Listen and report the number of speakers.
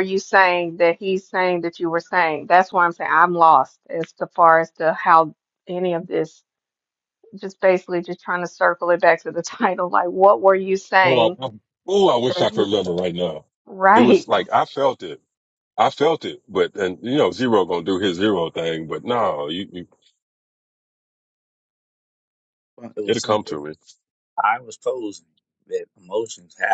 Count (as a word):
three